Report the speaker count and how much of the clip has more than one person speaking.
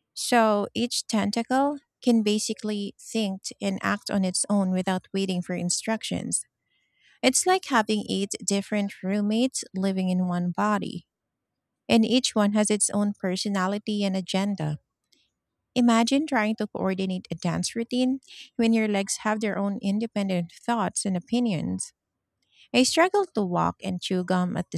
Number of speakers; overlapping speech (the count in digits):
1, no overlap